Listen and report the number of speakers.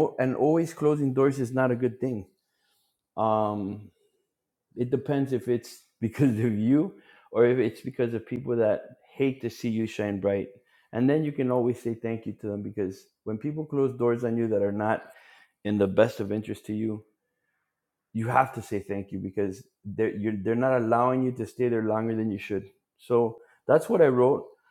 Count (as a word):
one